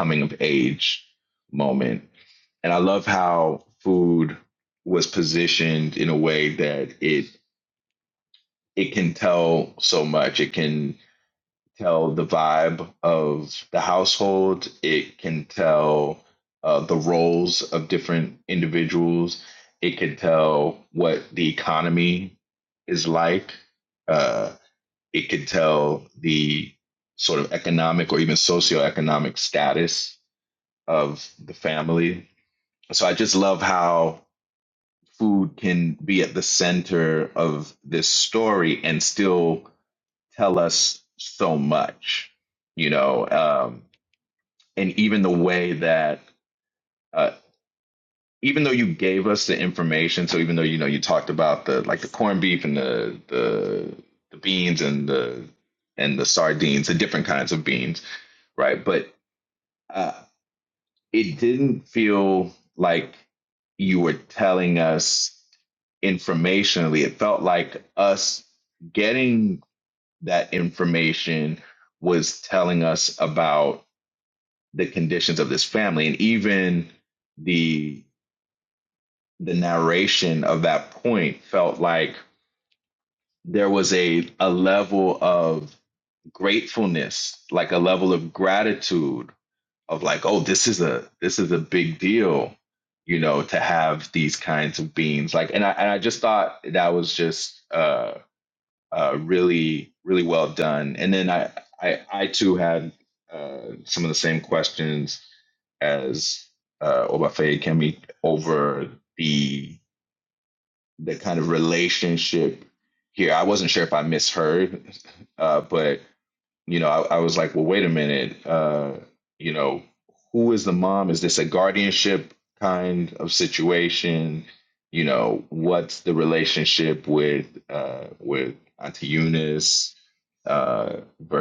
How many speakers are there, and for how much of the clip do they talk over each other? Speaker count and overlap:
one, no overlap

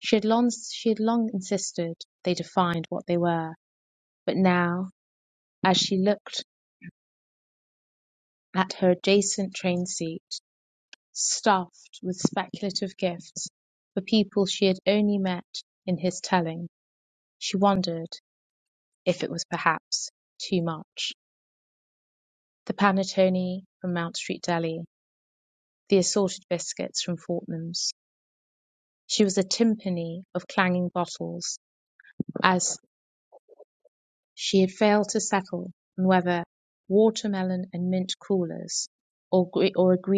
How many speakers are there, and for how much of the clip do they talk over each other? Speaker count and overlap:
one, no overlap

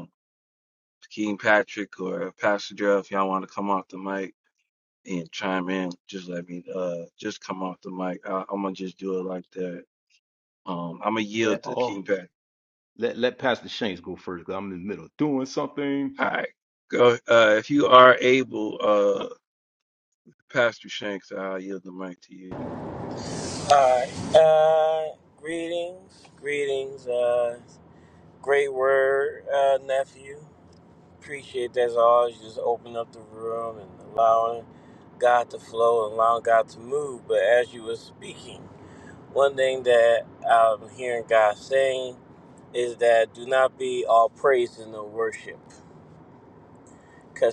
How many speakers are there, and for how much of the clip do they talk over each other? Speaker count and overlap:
three, about 1%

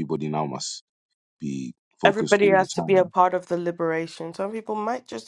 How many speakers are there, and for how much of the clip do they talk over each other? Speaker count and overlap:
two, about 19%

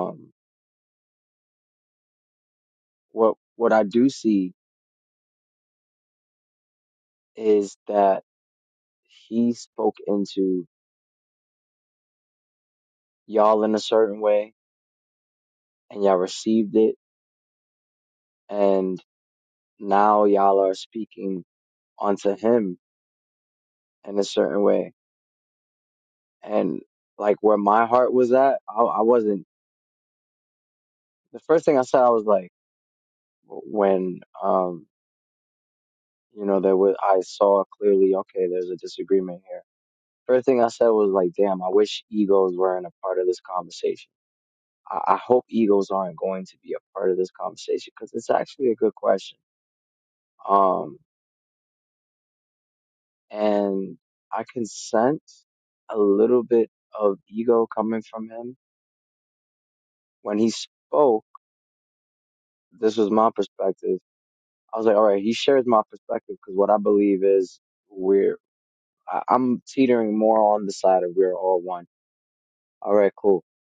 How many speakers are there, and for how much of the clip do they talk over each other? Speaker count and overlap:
one, no overlap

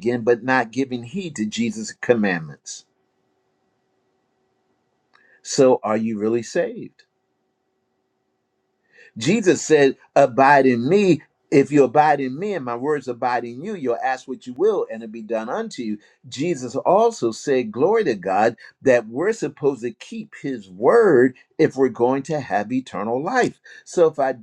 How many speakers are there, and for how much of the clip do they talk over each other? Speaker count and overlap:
one, no overlap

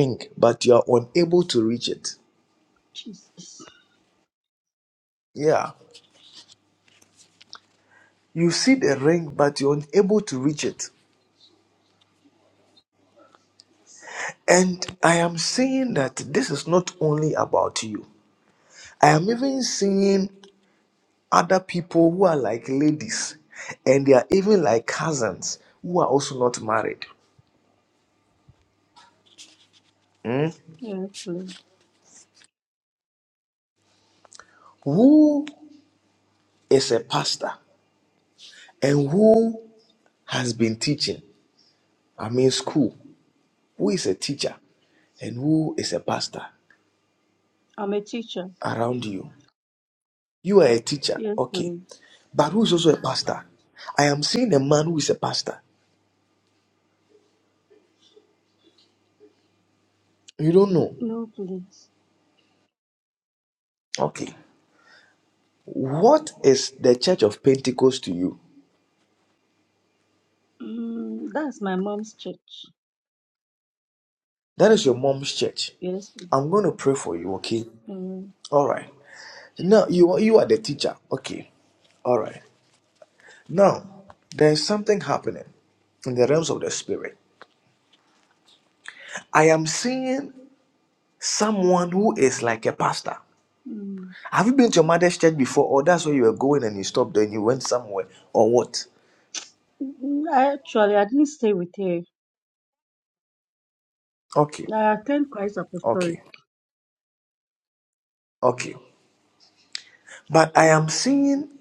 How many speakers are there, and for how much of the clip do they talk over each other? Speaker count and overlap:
two, about 1%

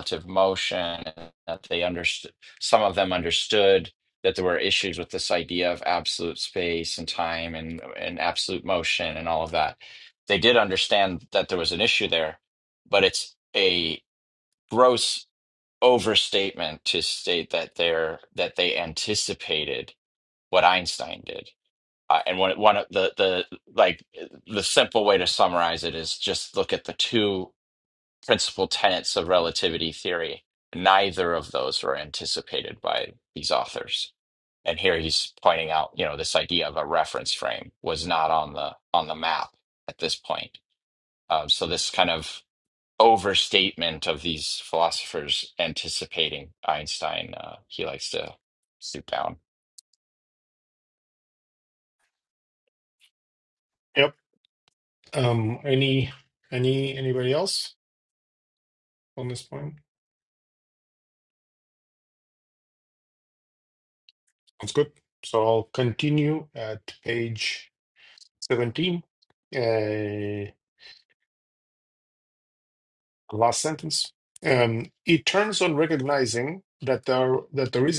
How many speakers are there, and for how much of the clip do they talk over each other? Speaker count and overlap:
two, no overlap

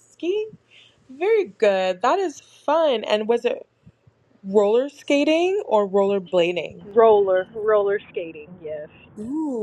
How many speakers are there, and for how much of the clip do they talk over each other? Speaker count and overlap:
two, no overlap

